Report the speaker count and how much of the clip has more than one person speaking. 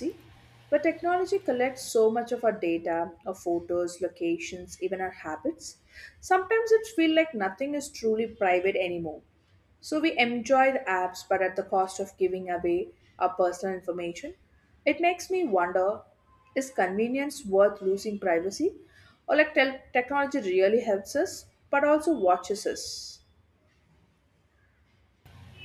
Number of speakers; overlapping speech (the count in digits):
1, no overlap